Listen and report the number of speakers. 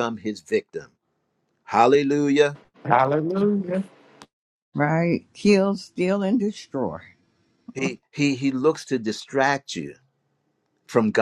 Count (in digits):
3